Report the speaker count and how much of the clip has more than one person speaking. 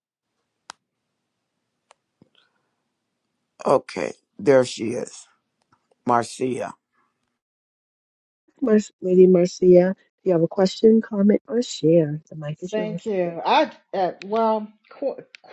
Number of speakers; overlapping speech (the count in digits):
3, about 2%